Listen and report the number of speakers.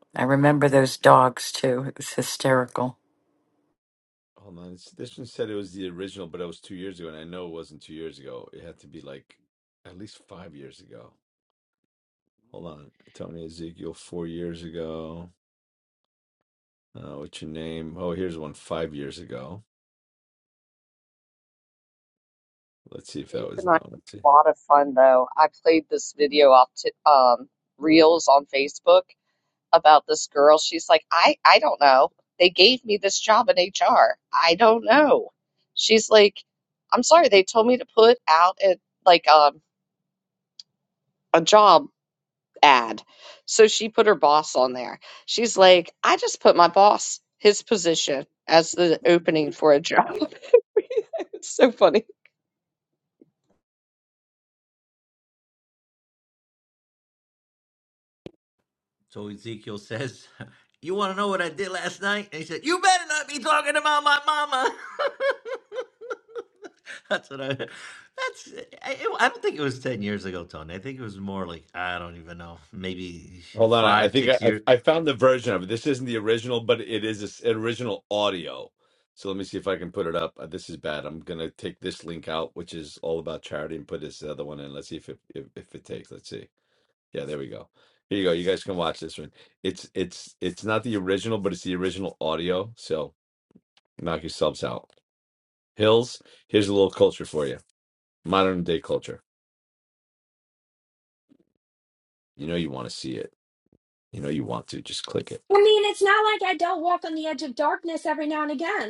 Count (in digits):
5